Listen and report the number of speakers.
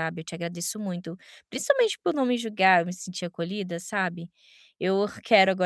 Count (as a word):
one